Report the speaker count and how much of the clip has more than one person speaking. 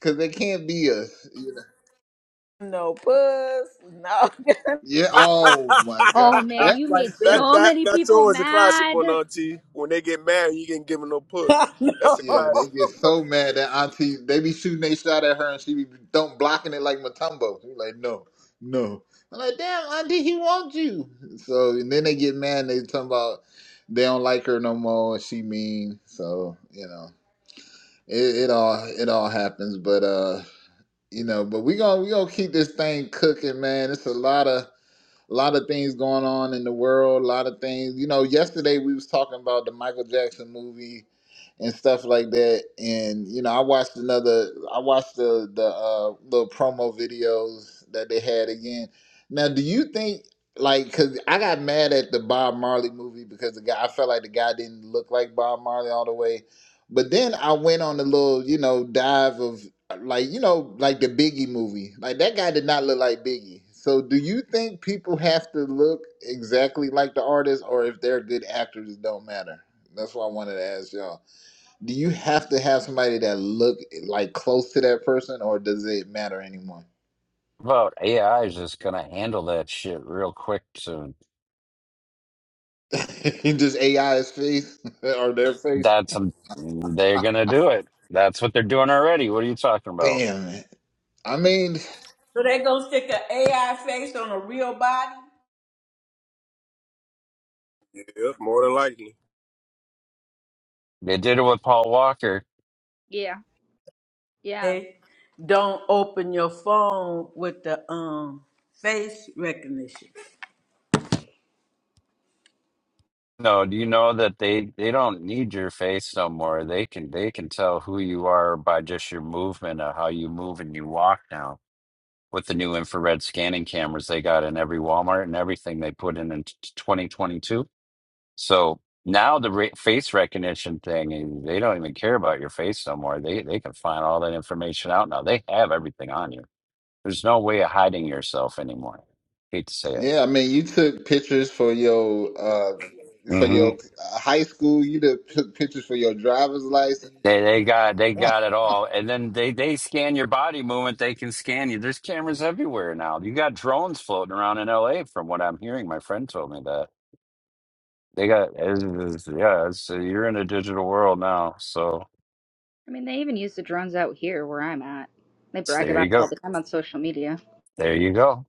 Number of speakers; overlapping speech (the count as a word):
five, about 3%